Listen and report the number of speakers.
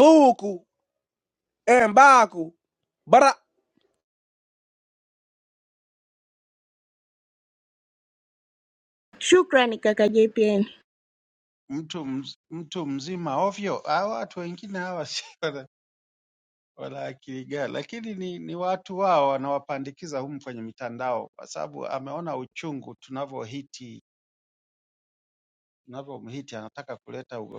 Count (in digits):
3